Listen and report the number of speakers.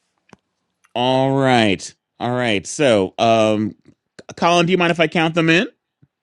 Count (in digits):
1